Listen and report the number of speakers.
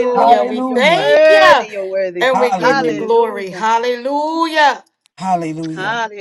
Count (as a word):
three